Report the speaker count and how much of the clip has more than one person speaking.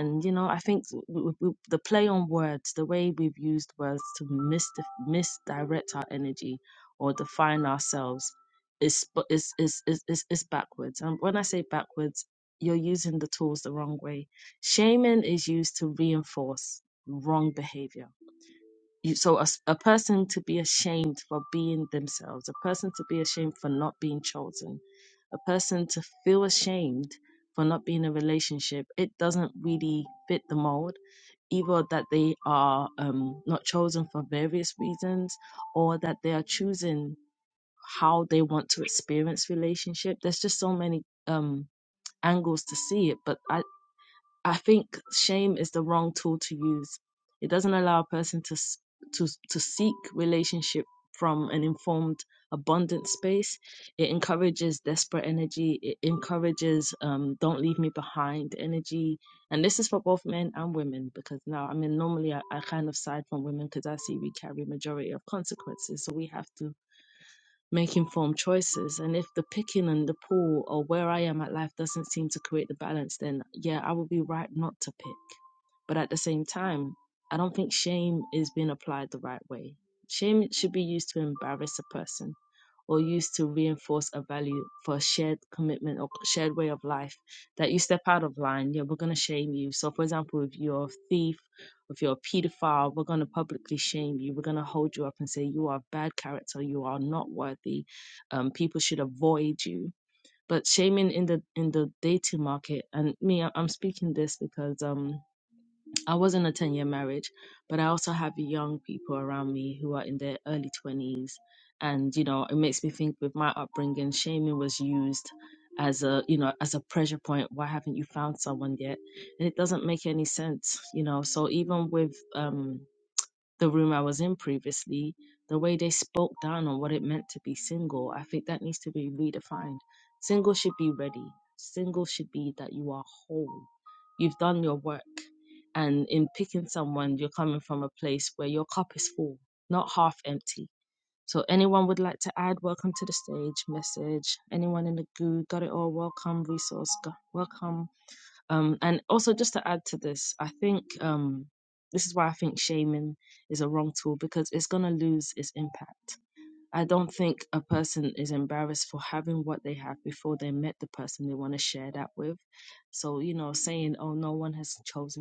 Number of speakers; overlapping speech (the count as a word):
one, no overlap